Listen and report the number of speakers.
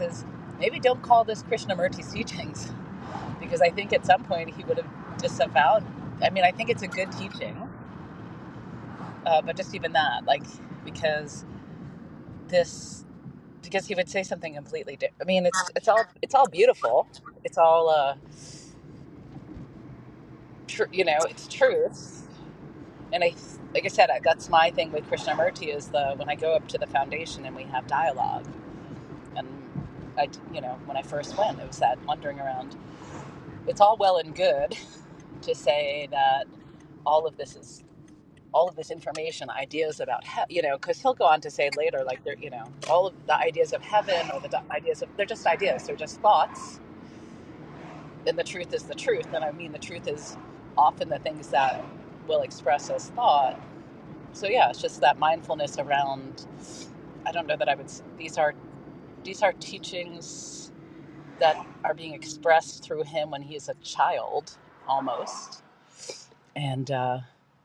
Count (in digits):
1